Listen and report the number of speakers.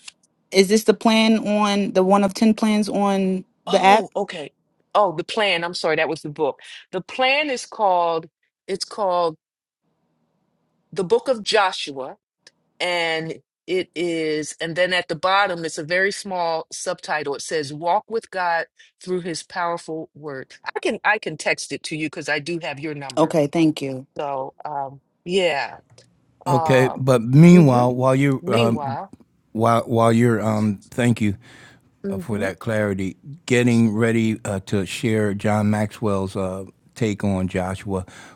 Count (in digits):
3